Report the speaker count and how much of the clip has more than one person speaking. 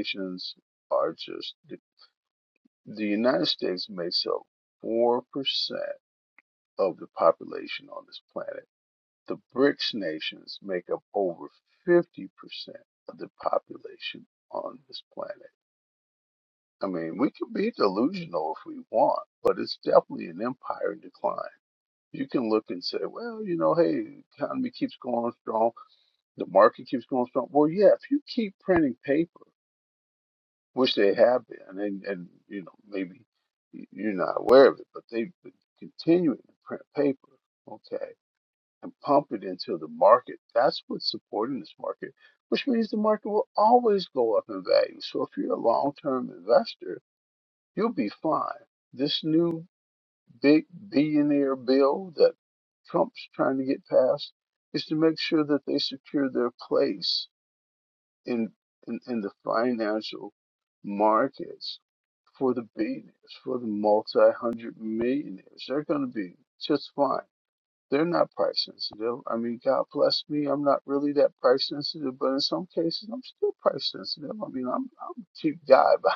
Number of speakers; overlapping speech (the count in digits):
1, no overlap